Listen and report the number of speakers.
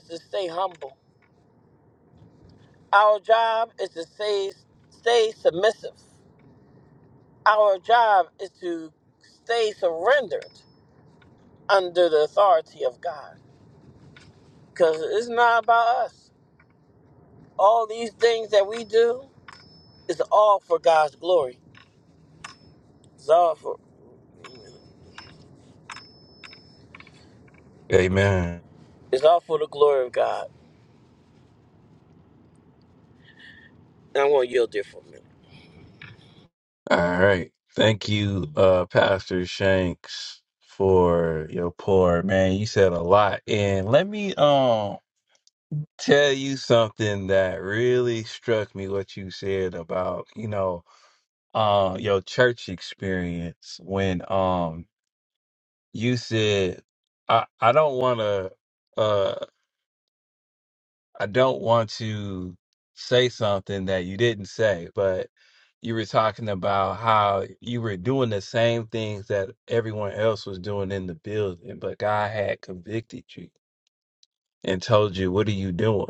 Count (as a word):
two